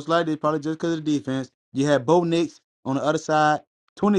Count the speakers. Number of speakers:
1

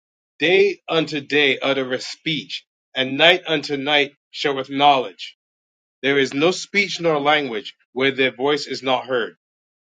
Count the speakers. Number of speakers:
1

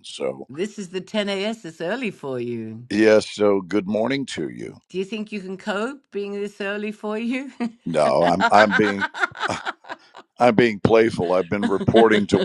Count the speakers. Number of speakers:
2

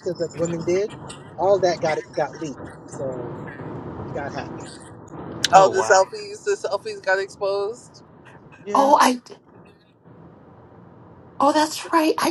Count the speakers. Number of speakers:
3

